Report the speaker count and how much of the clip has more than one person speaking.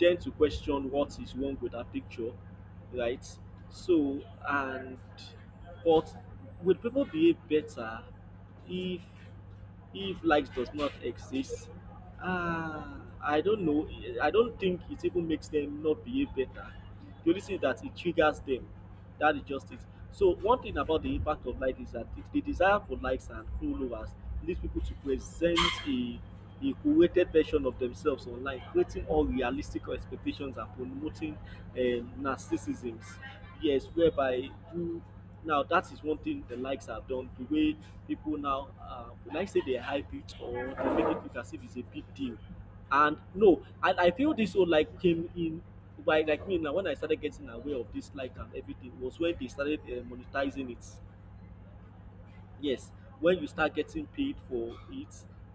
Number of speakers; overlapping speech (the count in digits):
1, no overlap